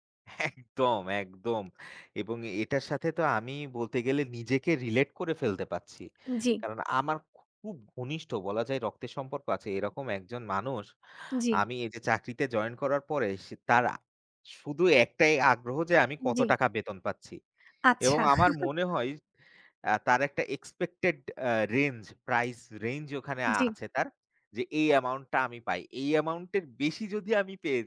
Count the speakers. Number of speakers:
two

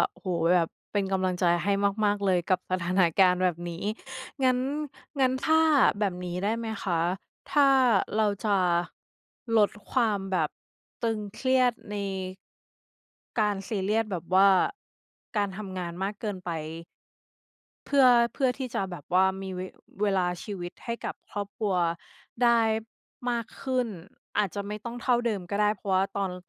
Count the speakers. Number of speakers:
one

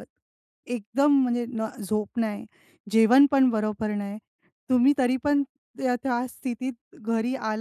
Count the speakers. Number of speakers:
one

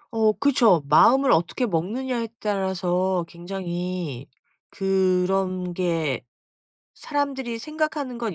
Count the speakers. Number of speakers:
one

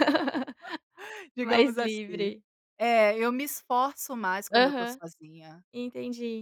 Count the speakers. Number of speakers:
two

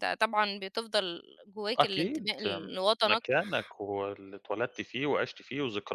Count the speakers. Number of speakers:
two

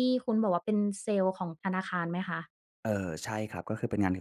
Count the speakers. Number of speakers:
two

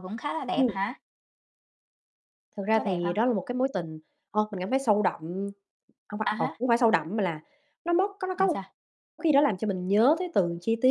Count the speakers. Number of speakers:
two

